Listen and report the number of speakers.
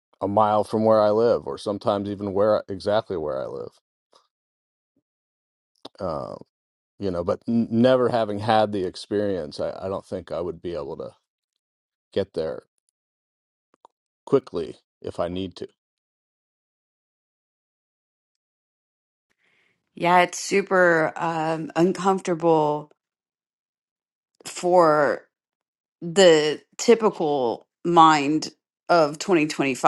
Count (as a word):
two